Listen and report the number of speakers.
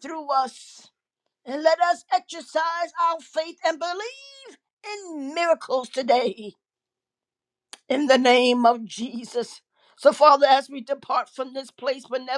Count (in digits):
1